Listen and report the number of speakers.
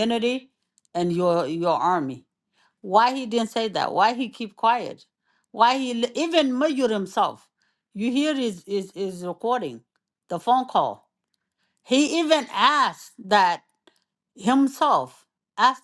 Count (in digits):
1